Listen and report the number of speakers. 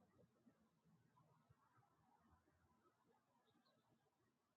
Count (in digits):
0